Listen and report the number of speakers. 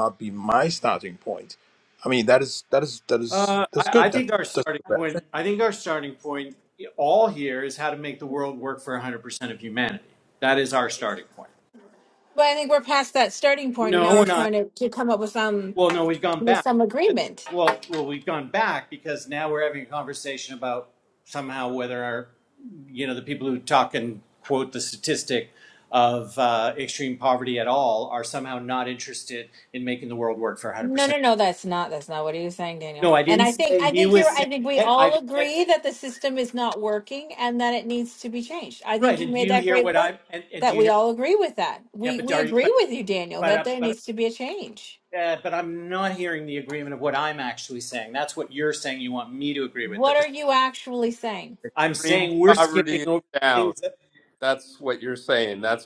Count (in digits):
4